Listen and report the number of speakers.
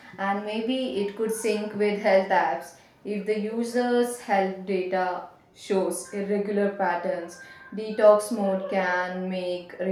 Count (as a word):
one